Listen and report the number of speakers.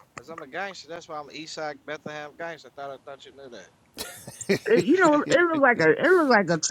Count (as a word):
two